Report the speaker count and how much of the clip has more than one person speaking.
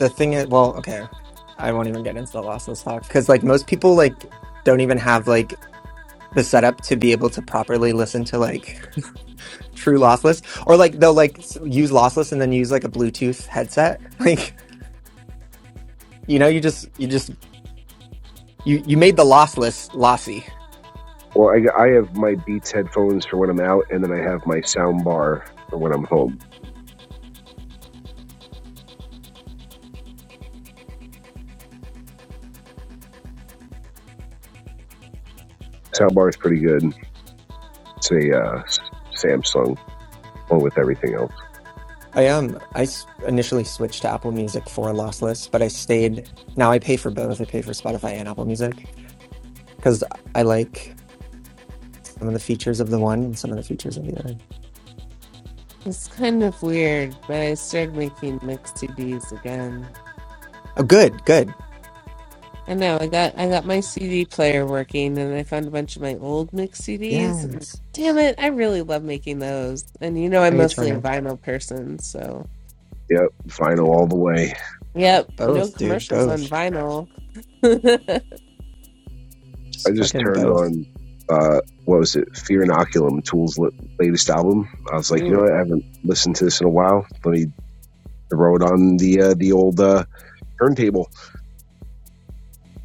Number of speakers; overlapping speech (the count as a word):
three, about 3%